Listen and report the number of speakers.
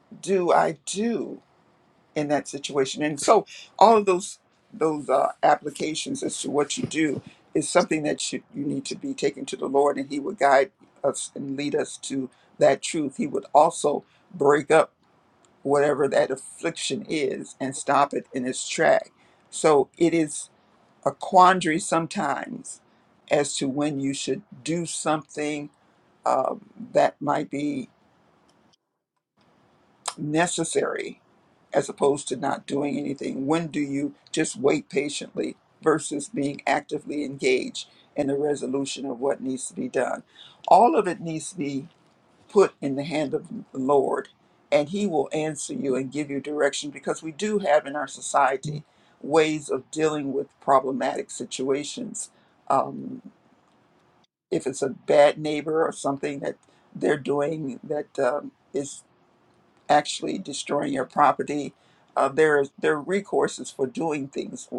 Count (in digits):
1